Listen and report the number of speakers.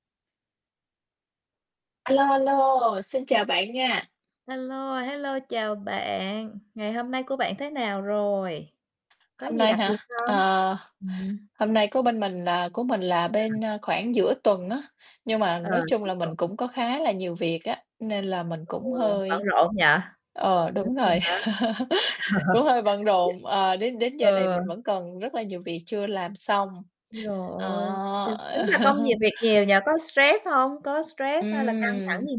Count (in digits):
2